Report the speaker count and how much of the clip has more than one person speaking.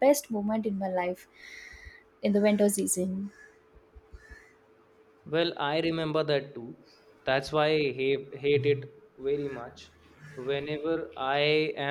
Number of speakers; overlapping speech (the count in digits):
2, no overlap